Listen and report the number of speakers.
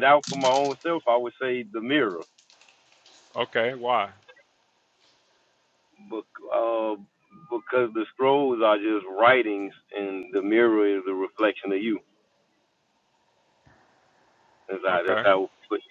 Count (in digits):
2